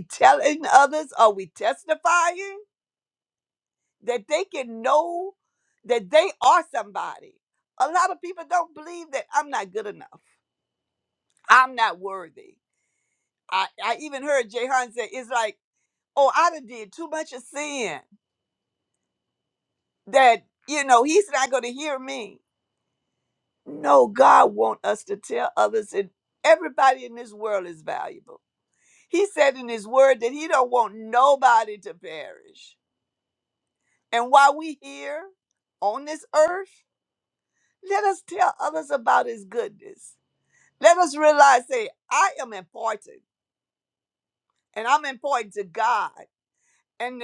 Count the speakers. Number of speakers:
one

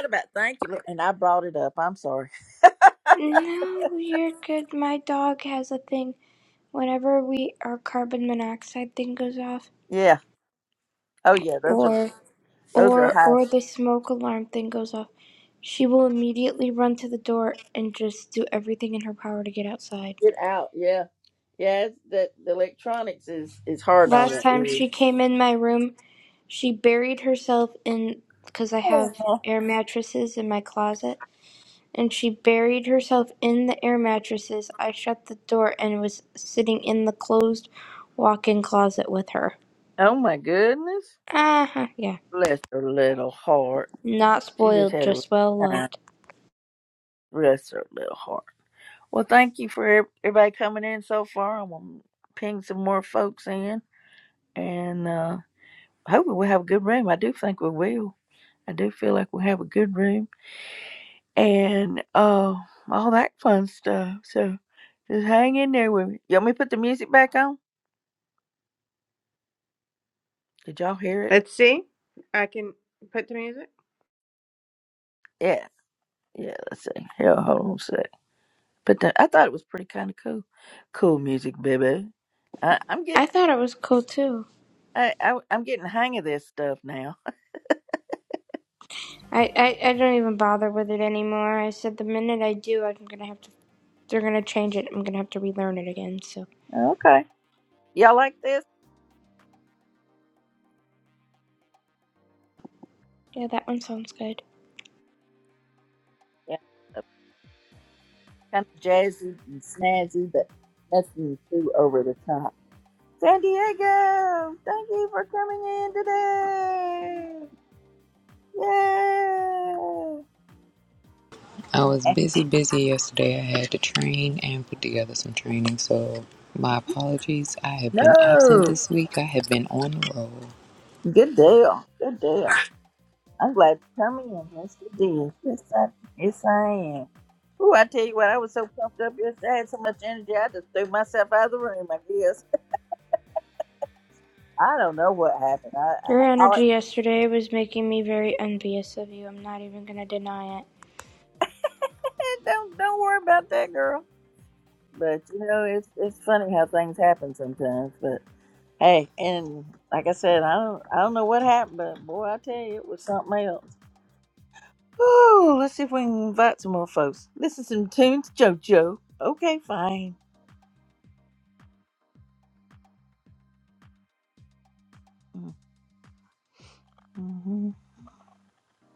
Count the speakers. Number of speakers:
four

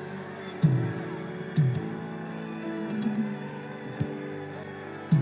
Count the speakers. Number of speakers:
zero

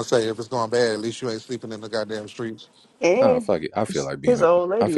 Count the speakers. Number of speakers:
three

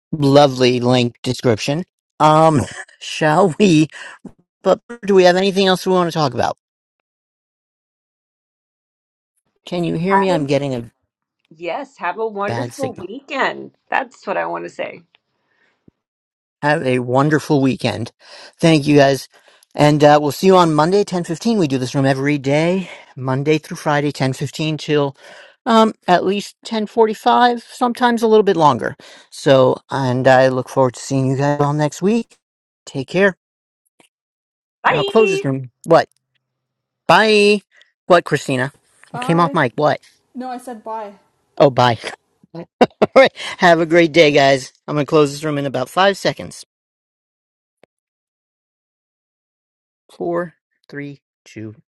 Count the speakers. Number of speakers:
three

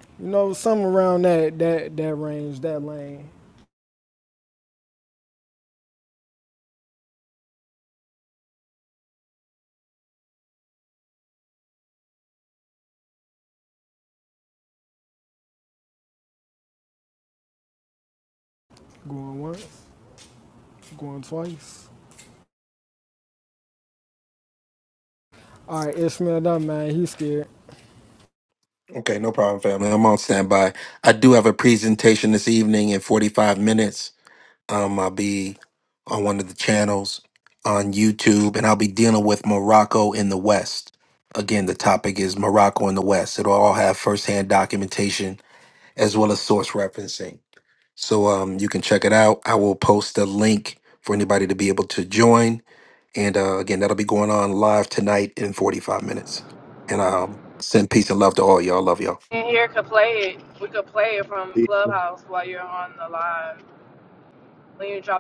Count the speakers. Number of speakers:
three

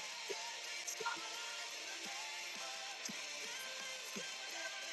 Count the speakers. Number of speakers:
zero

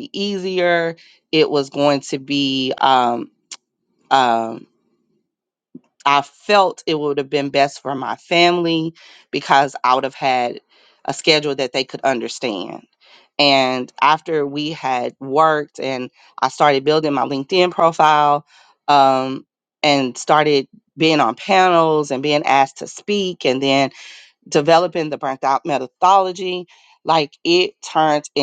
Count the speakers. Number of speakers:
one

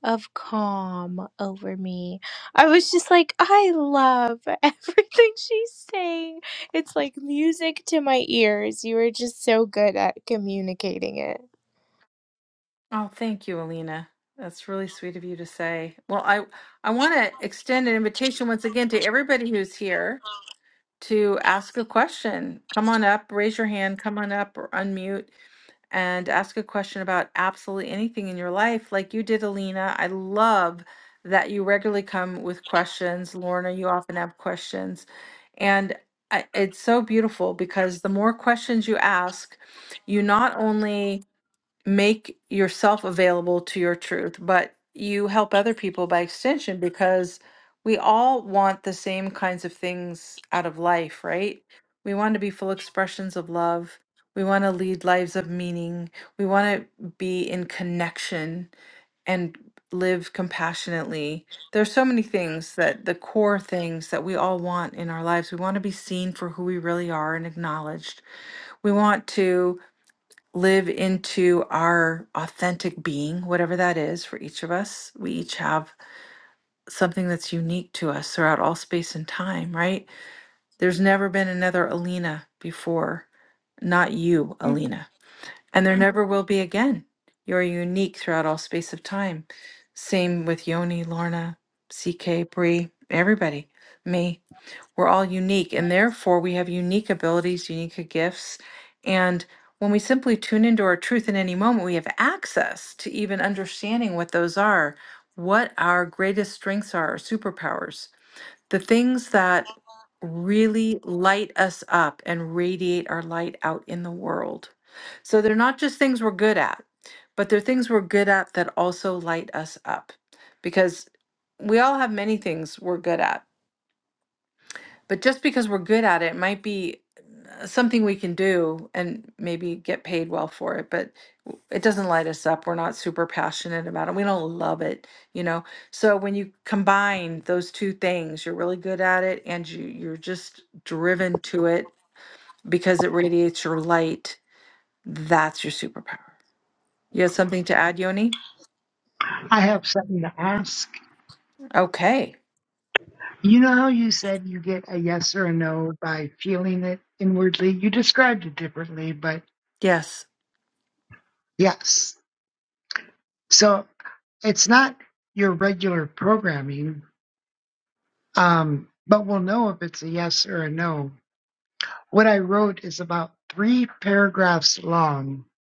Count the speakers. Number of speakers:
three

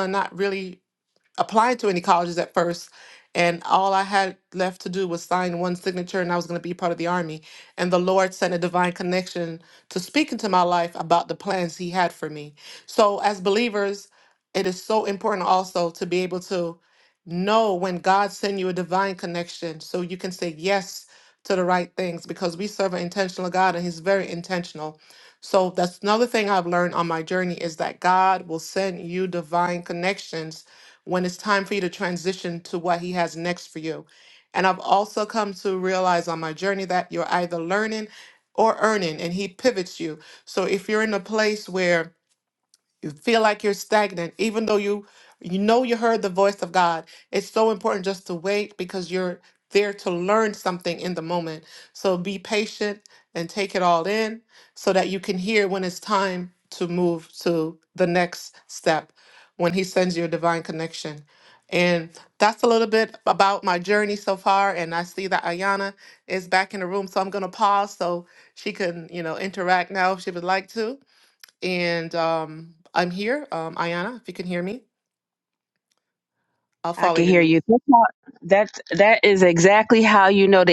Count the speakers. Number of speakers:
two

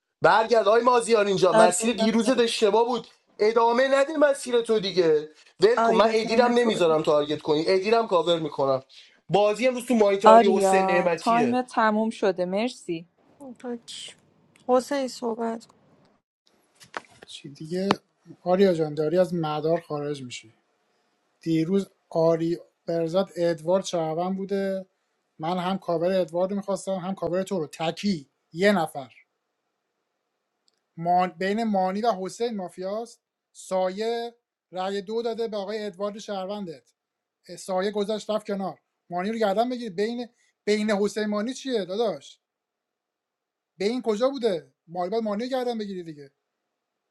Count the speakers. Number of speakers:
four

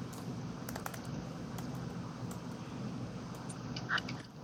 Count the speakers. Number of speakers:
zero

